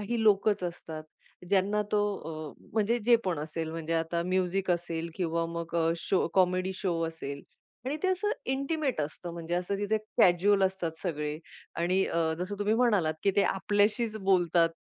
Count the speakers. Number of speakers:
1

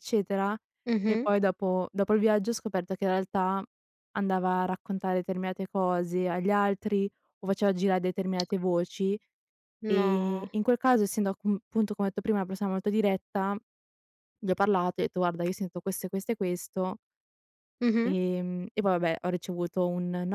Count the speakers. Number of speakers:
2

